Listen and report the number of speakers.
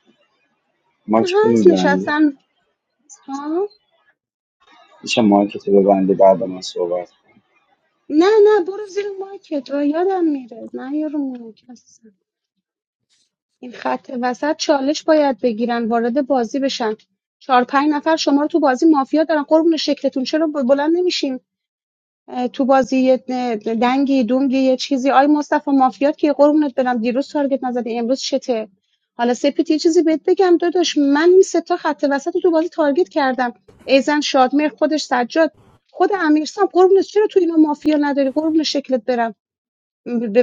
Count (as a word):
two